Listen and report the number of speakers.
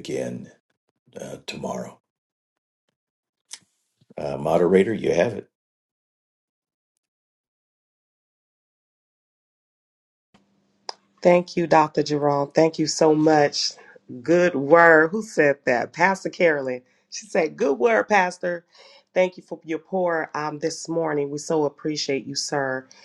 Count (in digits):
2